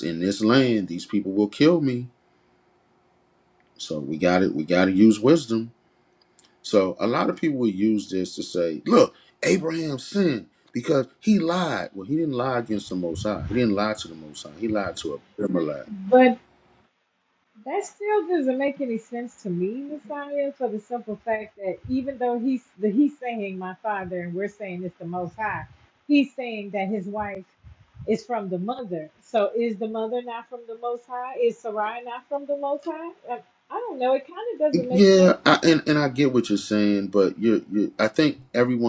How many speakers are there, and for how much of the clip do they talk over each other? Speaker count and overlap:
two, about 1%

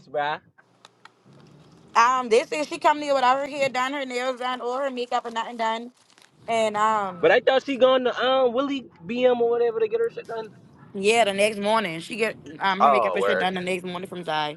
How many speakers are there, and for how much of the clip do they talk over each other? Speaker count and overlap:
two, about 5%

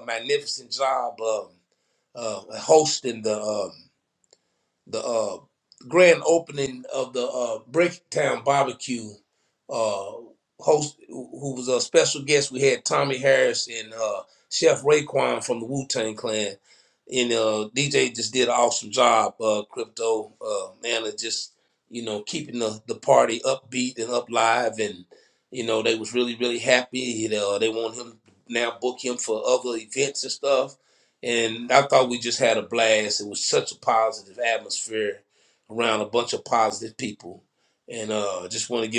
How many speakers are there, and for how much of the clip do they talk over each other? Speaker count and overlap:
one, no overlap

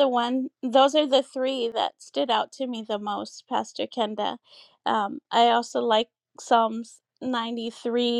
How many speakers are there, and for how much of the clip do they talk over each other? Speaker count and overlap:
one, no overlap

